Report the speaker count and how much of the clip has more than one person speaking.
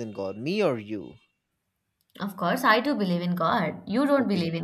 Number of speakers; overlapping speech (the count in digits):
2, about 6%